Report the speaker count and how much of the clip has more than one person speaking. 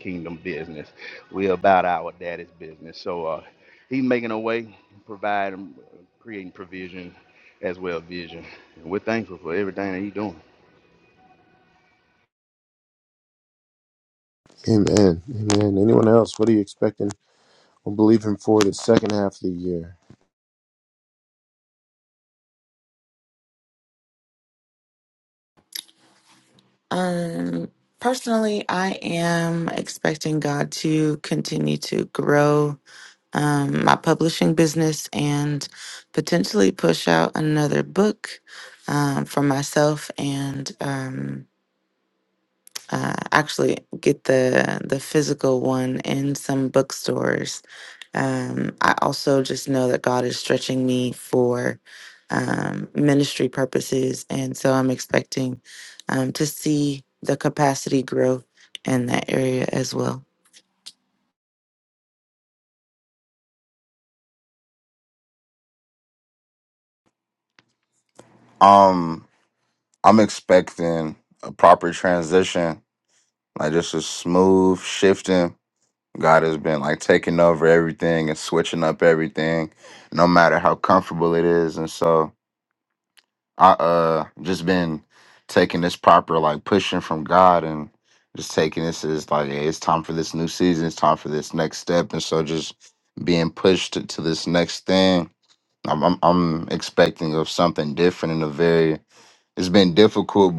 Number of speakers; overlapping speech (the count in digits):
4, no overlap